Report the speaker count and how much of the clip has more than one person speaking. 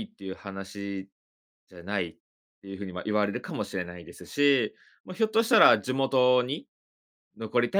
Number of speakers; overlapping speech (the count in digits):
1, no overlap